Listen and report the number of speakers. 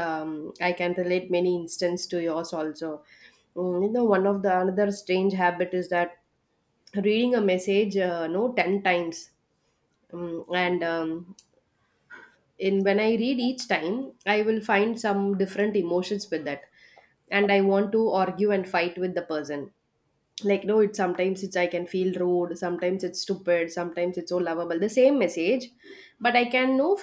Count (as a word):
one